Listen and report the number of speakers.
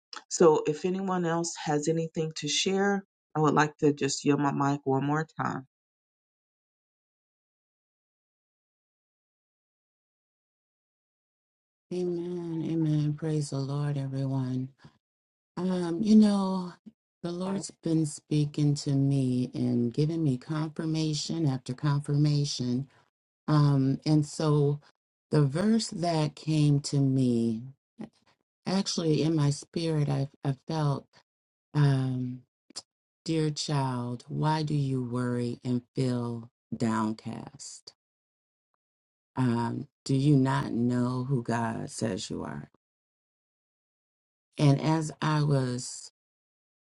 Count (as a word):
two